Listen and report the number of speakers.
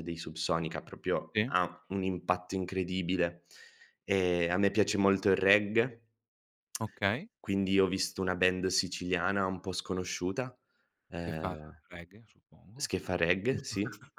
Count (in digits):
2